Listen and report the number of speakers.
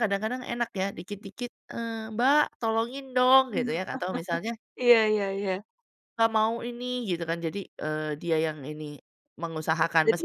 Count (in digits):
2